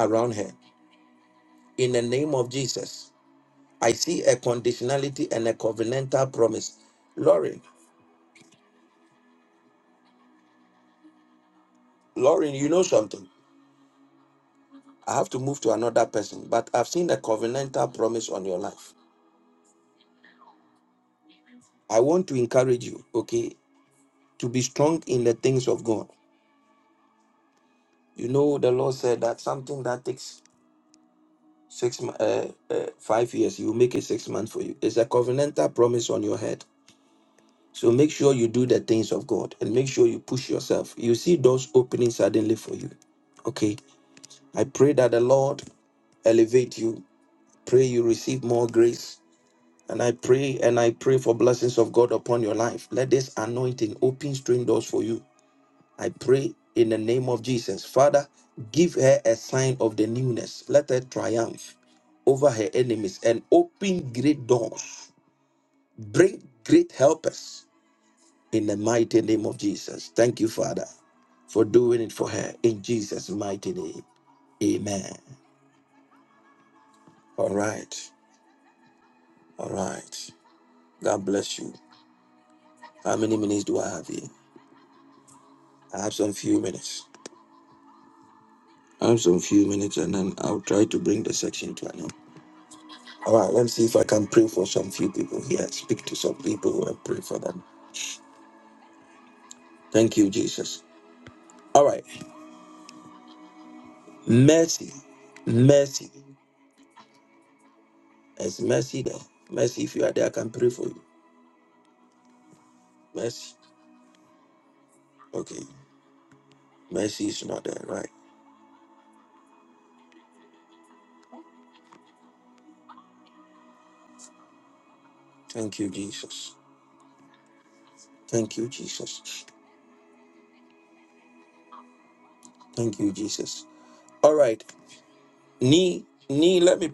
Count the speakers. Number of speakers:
1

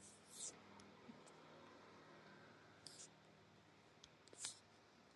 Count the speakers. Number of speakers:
0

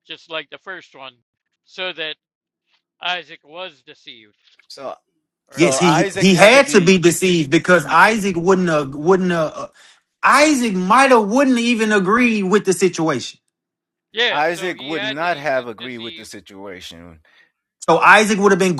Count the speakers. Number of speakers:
3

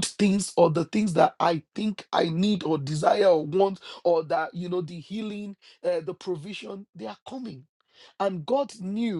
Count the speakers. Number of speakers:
1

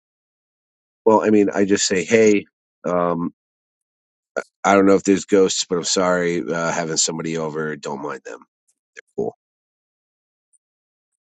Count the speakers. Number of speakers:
1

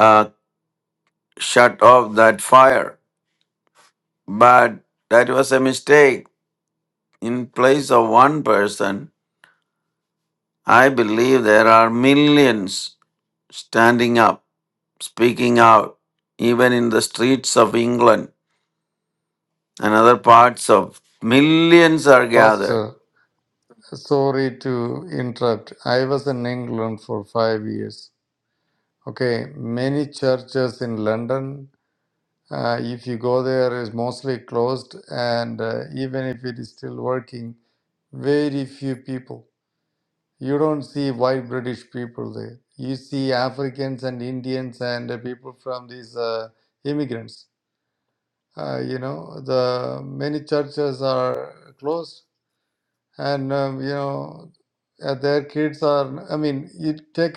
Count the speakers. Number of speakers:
2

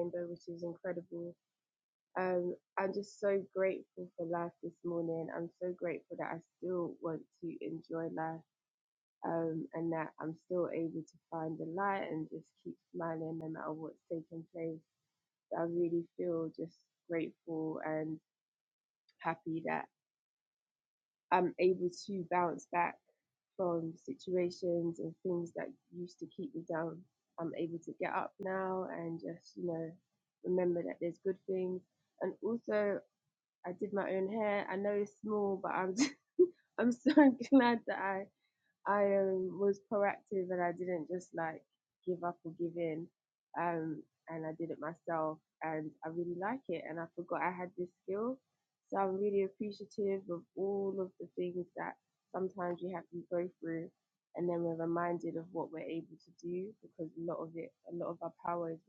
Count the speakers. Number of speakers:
1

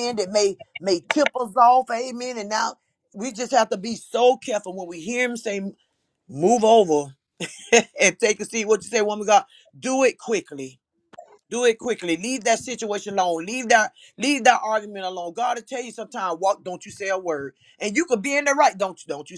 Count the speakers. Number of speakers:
1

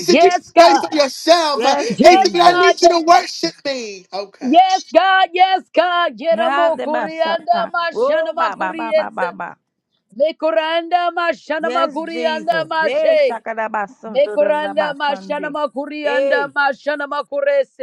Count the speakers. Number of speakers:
3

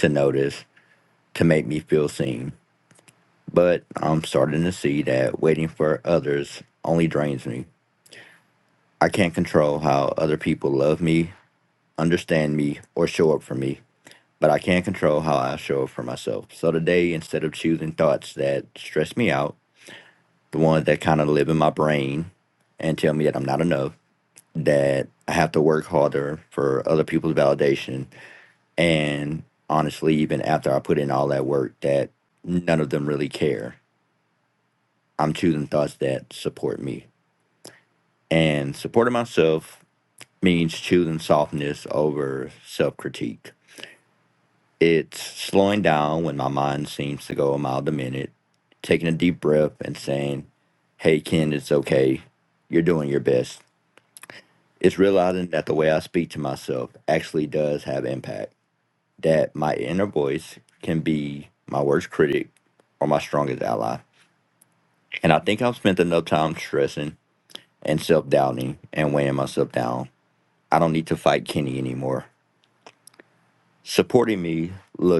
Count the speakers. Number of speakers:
1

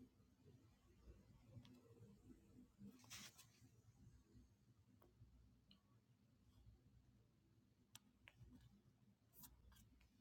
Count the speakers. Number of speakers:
0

